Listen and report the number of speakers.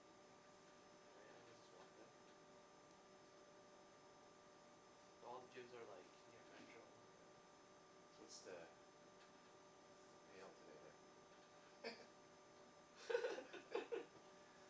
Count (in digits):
2